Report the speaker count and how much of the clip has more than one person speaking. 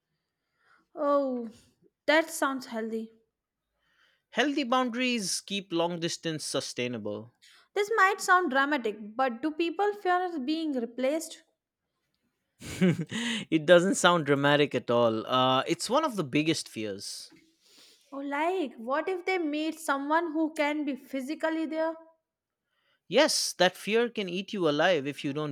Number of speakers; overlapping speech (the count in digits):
2, no overlap